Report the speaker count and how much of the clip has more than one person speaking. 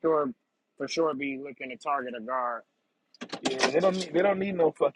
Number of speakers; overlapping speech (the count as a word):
two, no overlap